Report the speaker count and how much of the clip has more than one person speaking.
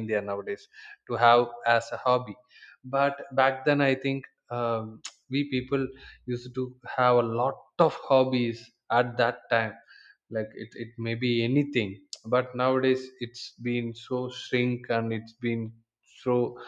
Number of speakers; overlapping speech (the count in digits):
1, no overlap